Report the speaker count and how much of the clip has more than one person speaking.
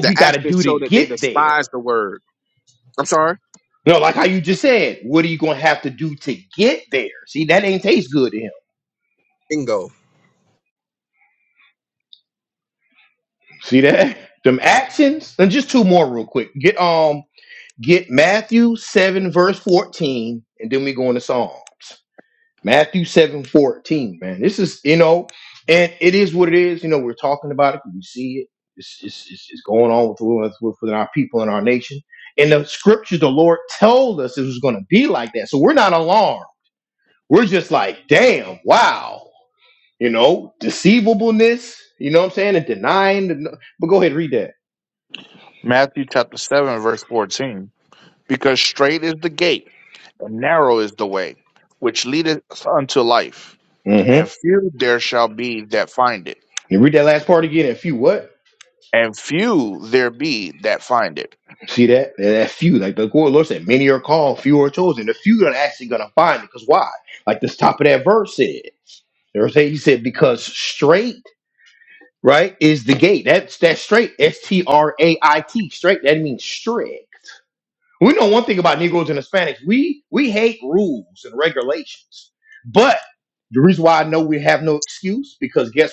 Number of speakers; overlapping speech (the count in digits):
3, about 2%